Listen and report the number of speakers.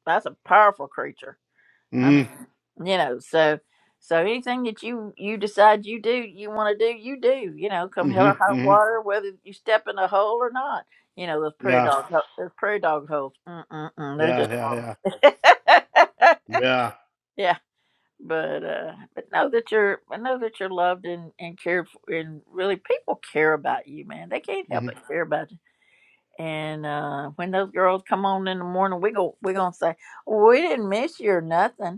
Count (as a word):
two